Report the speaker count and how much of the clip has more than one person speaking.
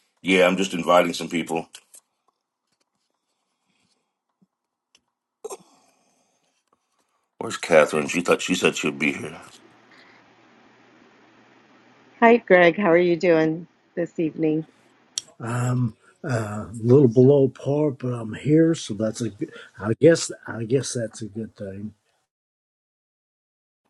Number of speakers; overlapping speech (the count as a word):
three, no overlap